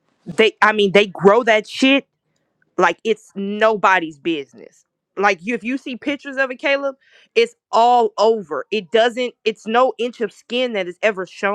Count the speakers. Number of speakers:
1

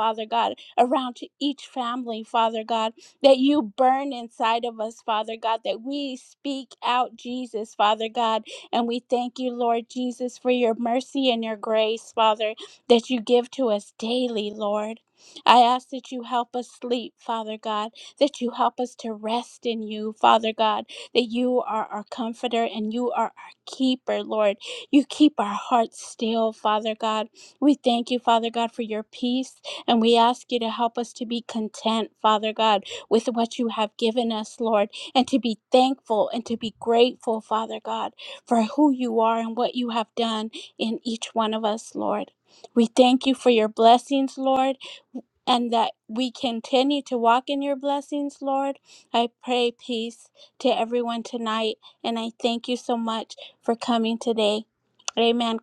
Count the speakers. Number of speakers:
1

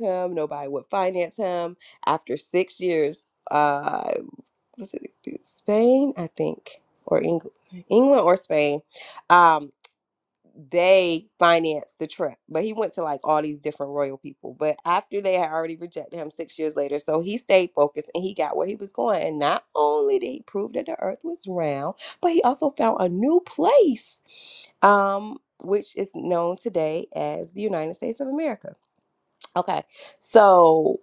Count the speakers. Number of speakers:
1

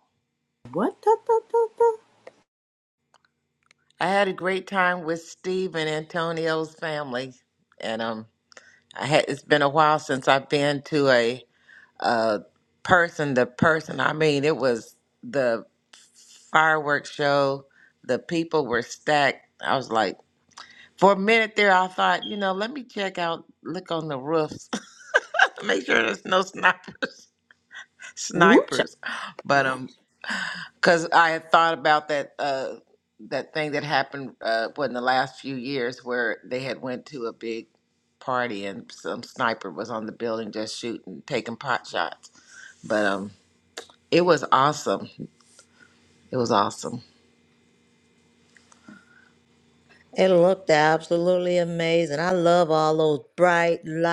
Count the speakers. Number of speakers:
3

